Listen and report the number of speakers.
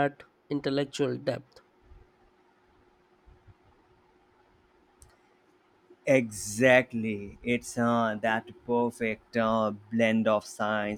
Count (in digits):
2